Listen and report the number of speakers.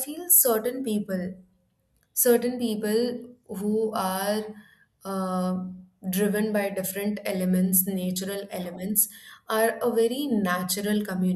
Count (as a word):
one